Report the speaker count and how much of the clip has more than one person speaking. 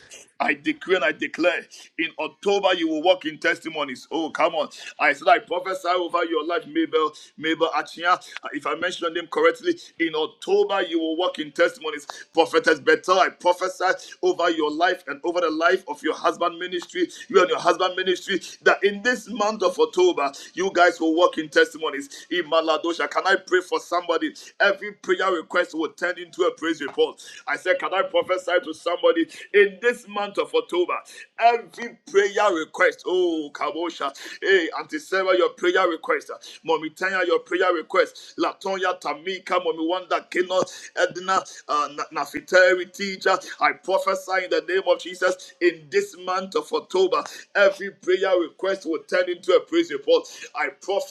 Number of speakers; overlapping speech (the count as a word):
one, no overlap